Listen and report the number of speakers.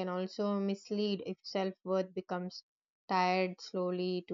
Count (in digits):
1